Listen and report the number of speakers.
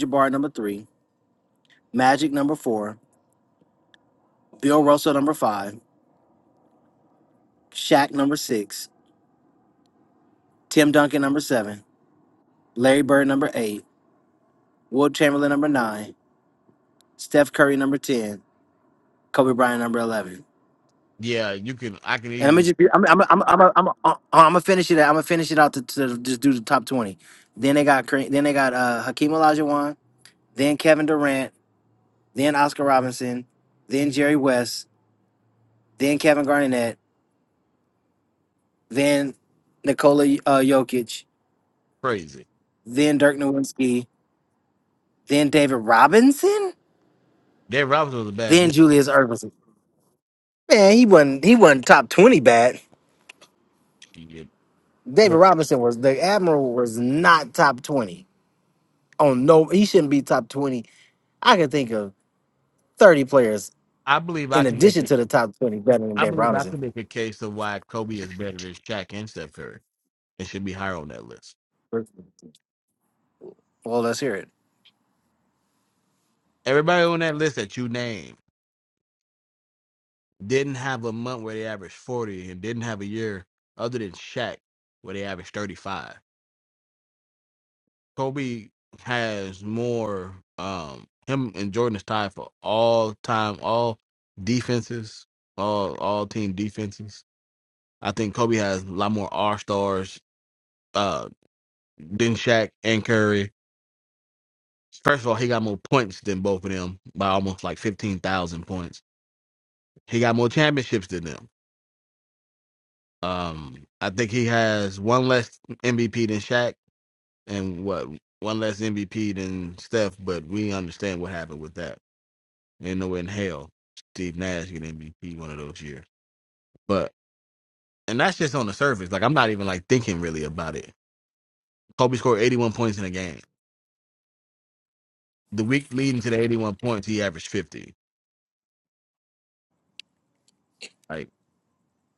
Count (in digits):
2